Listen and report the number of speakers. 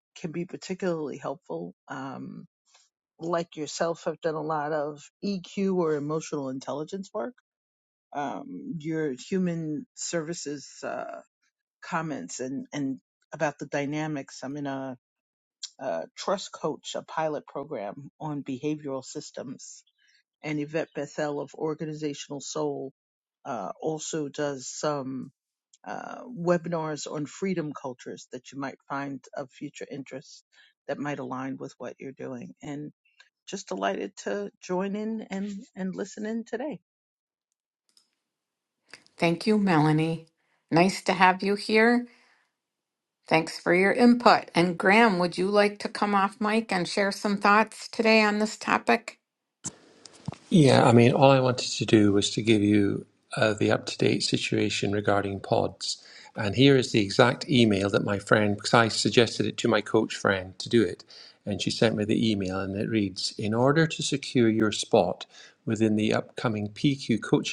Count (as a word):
three